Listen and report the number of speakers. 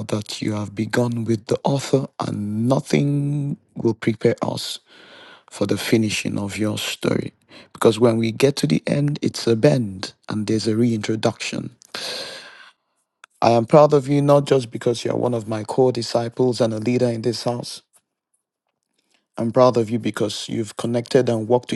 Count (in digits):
1